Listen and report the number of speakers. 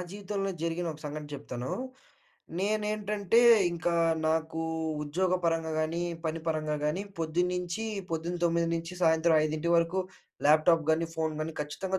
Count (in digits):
1